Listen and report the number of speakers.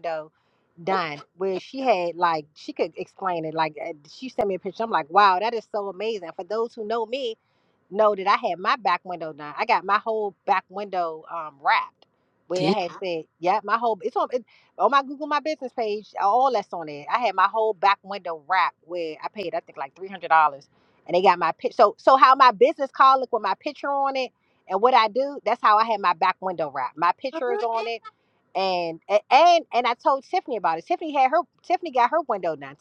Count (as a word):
one